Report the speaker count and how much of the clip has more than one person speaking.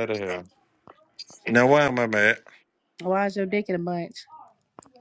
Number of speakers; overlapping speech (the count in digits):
2, no overlap